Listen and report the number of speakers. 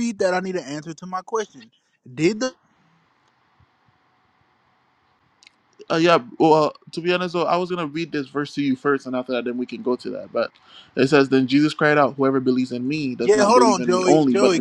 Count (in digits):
2